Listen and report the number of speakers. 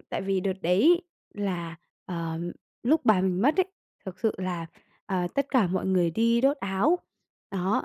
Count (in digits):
1